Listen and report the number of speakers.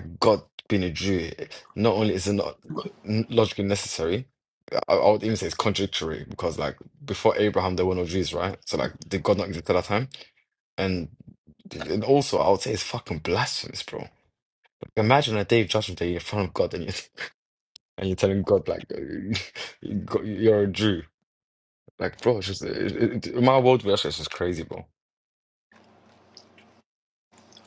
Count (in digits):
1